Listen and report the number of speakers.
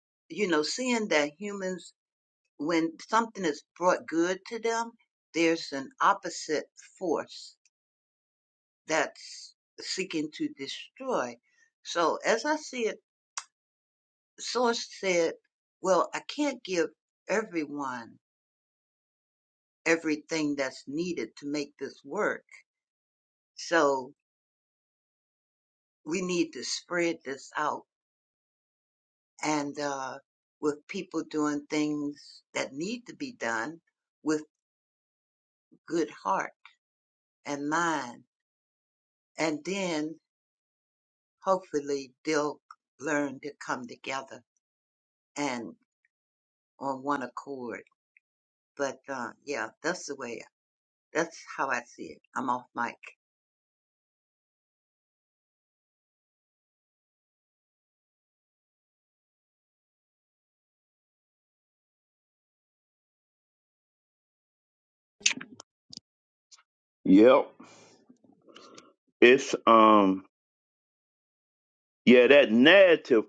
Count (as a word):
two